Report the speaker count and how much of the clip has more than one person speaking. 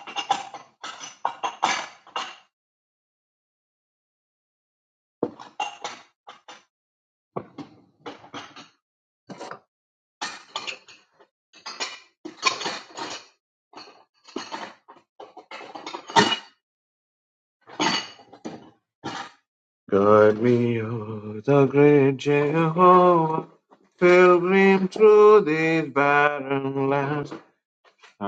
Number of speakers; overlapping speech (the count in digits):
1, no overlap